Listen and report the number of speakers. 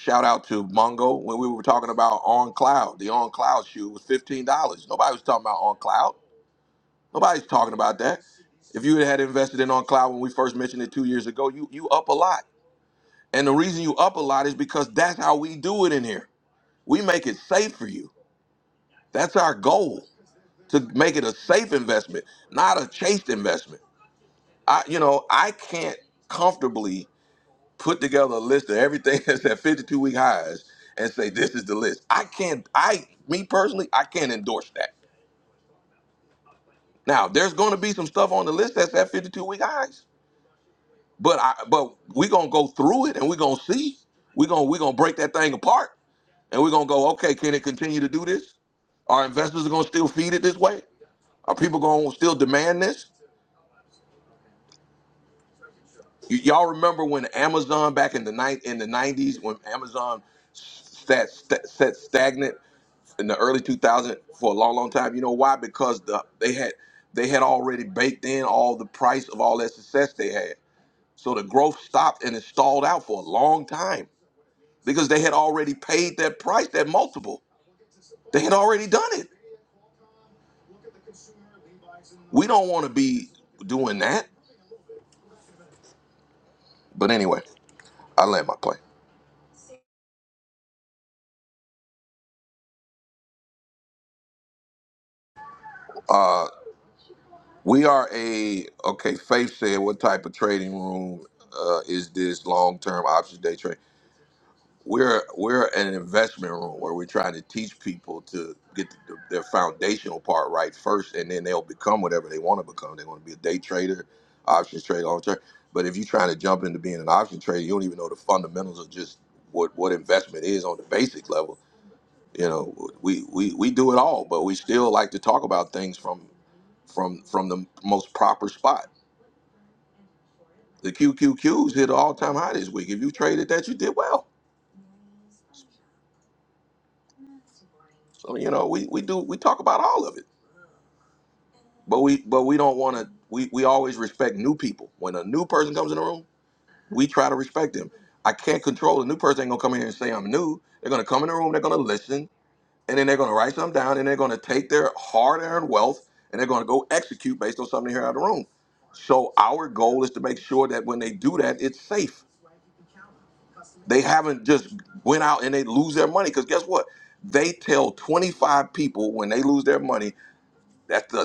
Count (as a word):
one